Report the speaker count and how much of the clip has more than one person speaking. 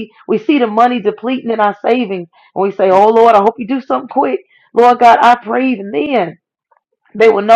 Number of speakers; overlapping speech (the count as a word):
one, no overlap